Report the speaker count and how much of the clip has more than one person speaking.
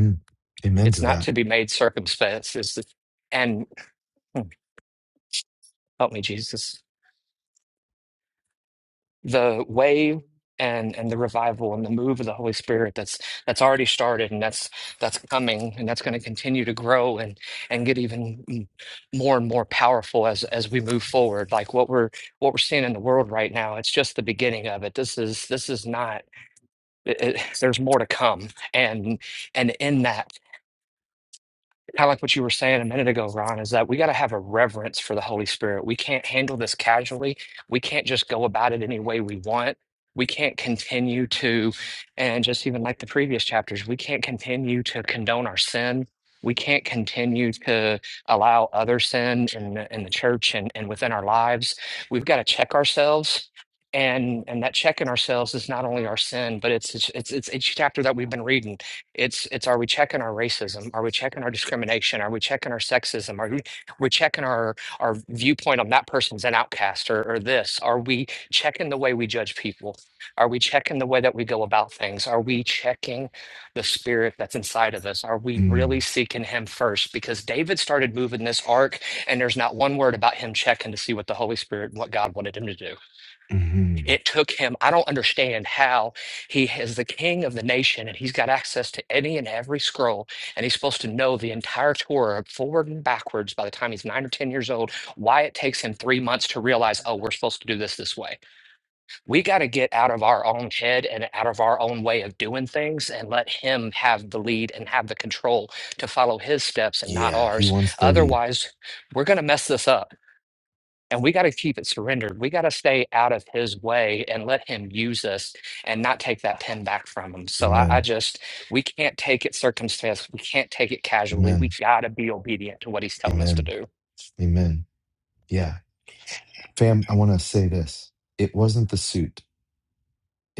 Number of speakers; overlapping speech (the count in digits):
2, about 2%